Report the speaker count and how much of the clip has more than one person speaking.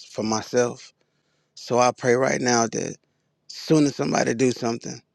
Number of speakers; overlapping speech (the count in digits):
1, no overlap